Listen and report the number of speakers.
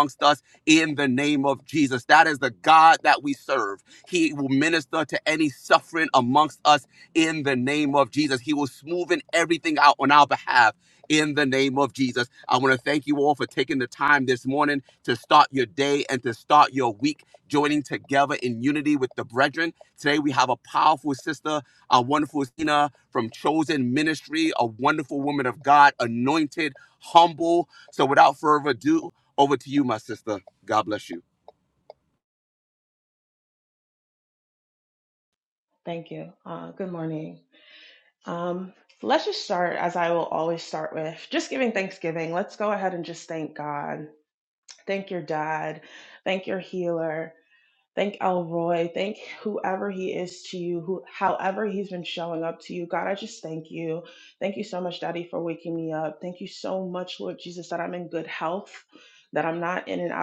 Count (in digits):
2